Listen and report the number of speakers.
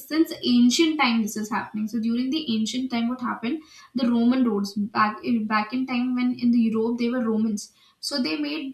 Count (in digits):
1